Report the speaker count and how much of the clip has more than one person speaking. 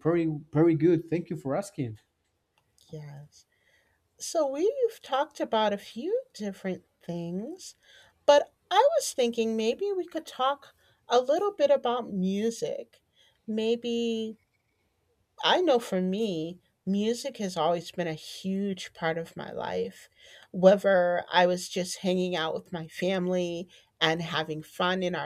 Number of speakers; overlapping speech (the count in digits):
2, no overlap